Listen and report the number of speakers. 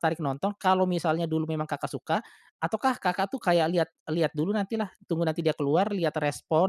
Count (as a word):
one